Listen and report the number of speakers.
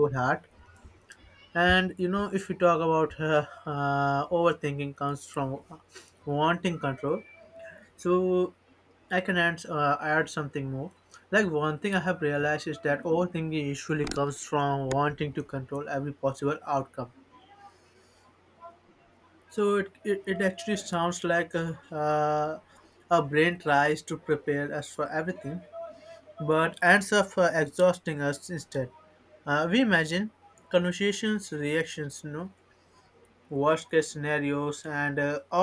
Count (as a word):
one